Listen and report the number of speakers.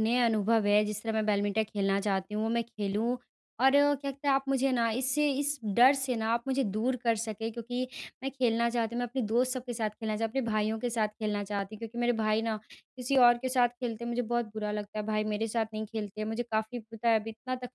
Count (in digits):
1